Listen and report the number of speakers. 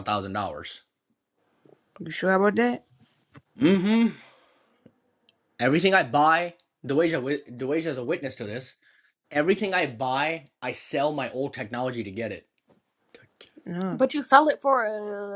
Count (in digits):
3